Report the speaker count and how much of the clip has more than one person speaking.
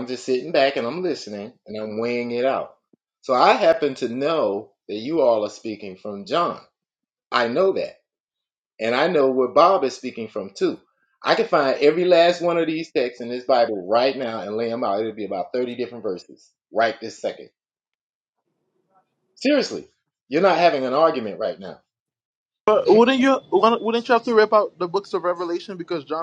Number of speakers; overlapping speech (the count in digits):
2, no overlap